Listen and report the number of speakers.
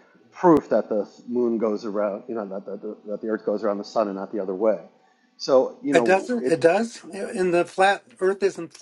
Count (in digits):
2